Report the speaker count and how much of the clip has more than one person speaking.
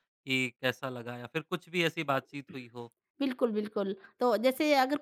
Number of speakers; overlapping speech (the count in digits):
2, no overlap